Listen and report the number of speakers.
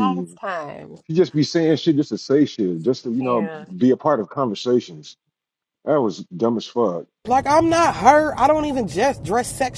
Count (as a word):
three